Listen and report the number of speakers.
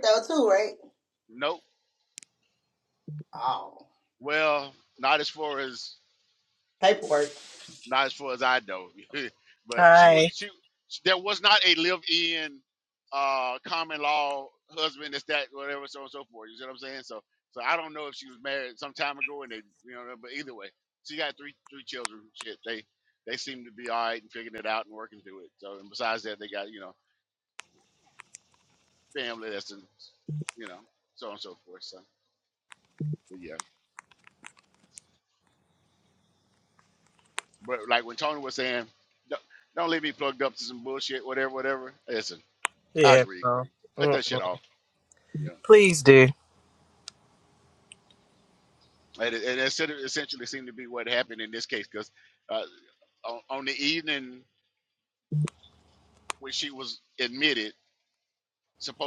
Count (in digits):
3